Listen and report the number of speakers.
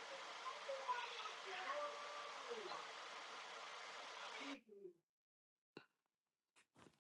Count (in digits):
0